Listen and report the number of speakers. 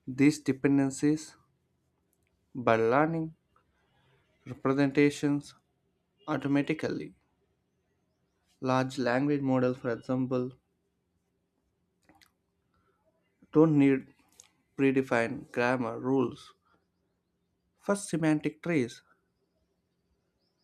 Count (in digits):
1